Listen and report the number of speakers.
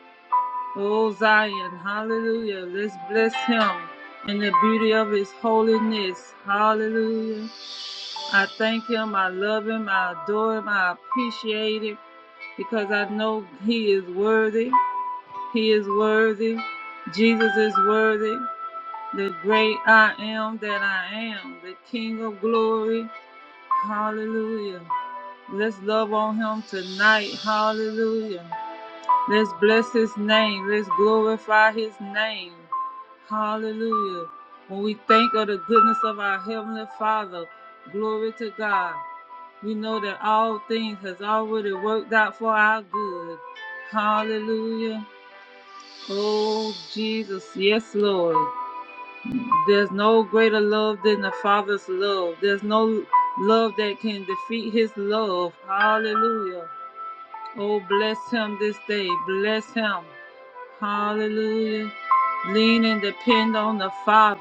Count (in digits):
1